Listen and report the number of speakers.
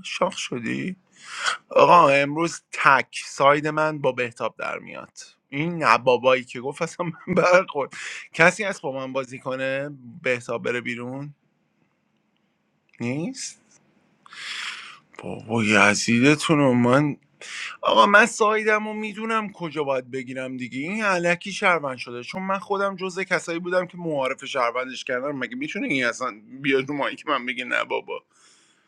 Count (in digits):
1